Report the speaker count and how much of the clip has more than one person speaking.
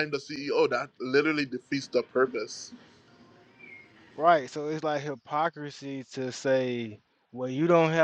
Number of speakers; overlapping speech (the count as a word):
two, no overlap